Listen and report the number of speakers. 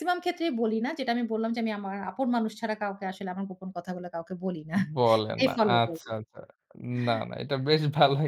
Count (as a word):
two